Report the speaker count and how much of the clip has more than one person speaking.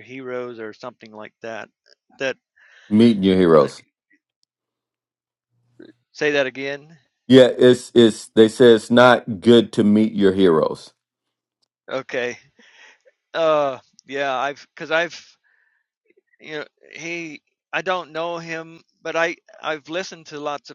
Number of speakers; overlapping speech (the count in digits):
2, about 1%